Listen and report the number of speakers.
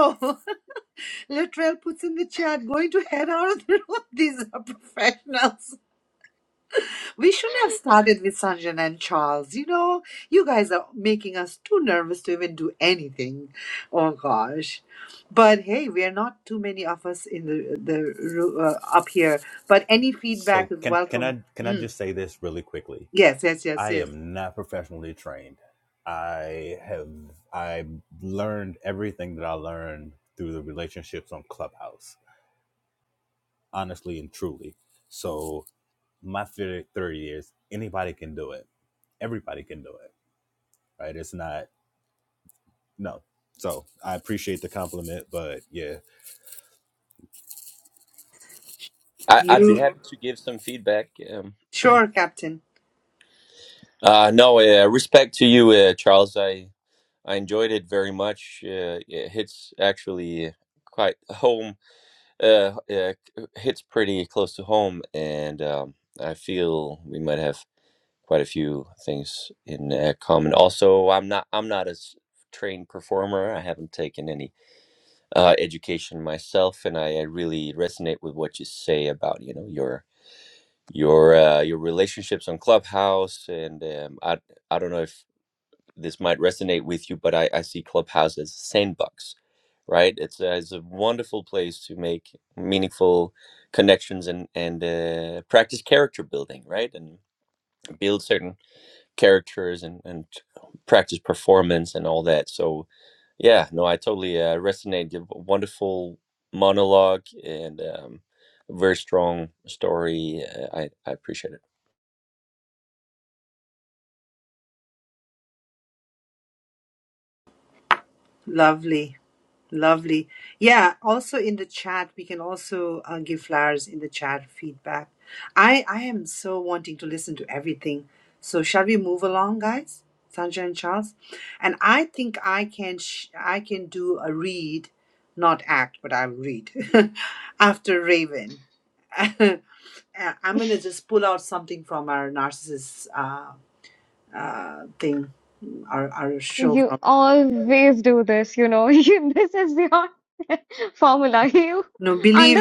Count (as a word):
four